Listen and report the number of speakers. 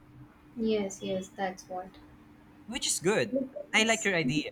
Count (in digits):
2